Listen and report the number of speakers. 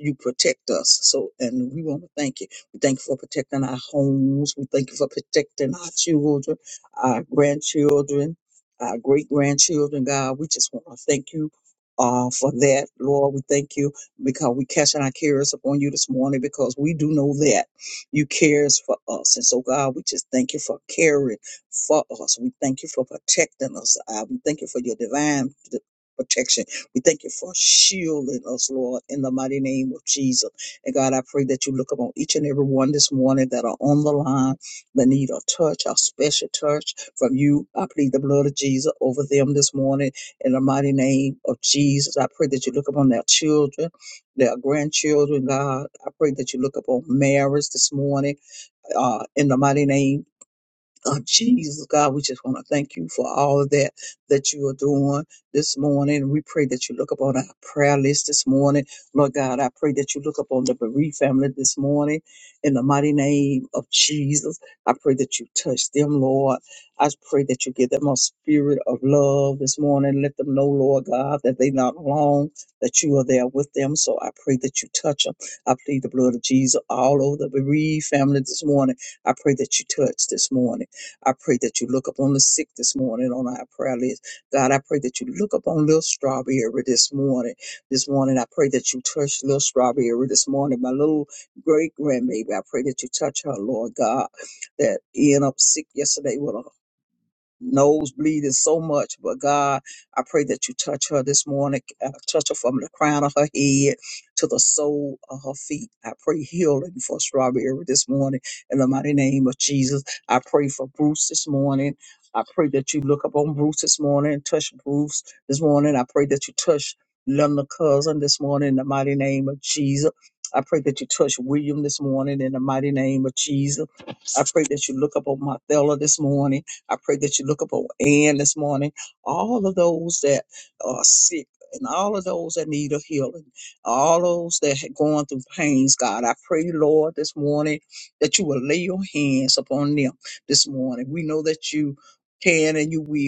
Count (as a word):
one